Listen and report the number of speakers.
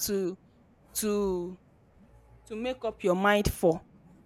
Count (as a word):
one